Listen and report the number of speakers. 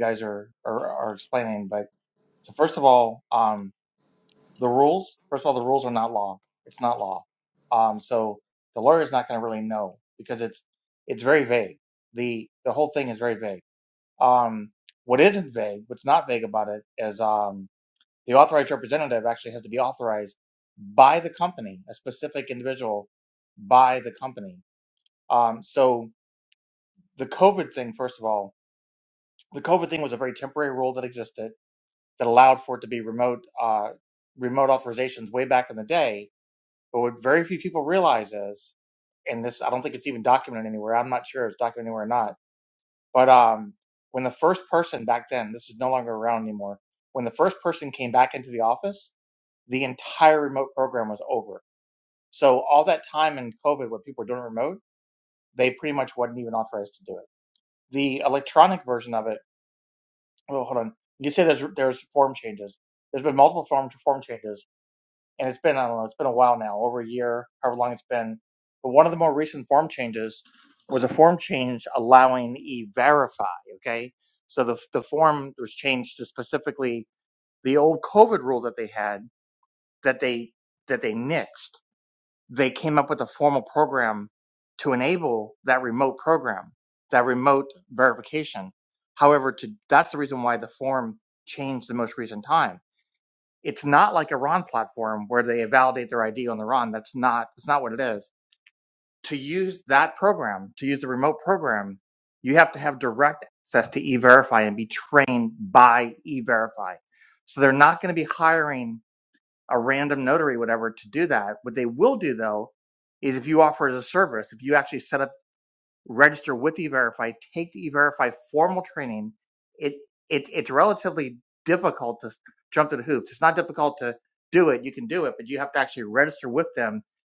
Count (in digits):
1